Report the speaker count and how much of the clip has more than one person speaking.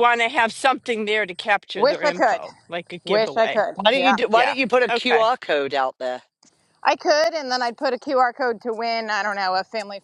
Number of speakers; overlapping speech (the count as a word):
three, about 23%